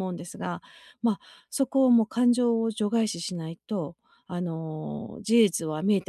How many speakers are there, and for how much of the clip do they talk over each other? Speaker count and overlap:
1, no overlap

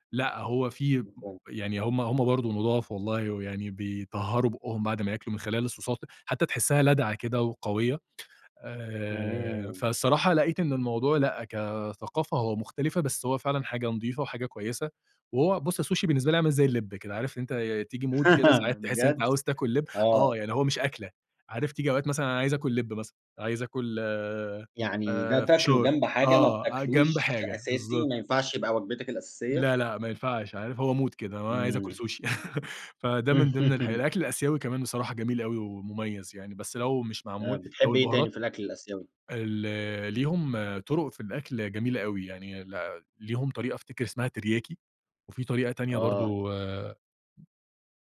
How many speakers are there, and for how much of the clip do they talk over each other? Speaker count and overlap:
2, about 13%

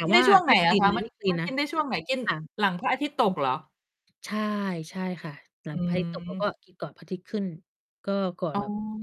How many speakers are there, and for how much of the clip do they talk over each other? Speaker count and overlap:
2, about 20%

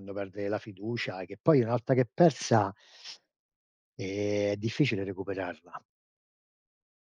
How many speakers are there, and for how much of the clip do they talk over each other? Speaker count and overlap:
1, no overlap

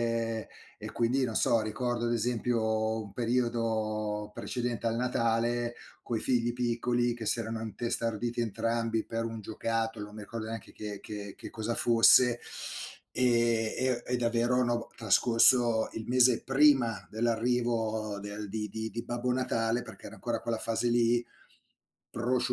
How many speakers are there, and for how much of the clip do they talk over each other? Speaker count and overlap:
1, no overlap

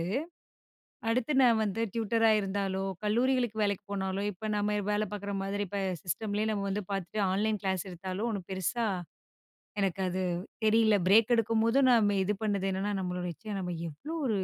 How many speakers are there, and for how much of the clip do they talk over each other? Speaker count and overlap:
1, no overlap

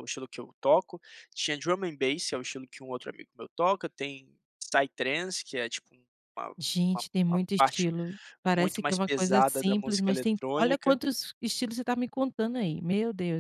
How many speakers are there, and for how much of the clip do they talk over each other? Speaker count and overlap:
2, about 25%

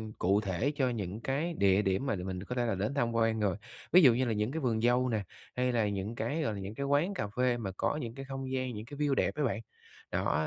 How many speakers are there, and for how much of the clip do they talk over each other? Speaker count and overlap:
1, no overlap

